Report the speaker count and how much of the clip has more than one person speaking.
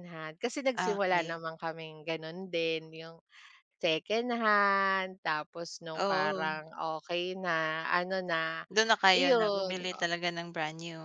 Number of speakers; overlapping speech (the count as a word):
two, about 18%